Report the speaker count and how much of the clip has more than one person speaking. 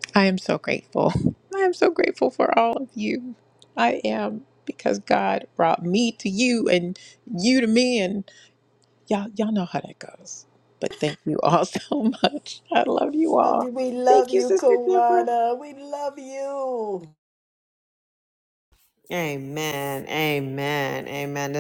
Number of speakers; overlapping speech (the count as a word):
three, about 7%